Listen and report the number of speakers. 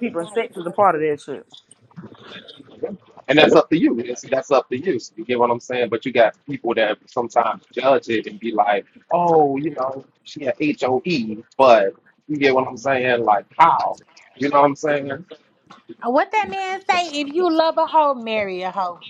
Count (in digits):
3